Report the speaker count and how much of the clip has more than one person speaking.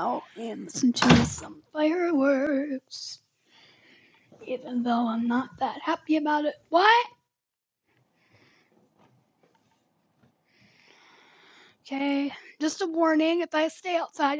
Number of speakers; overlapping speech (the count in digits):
1, no overlap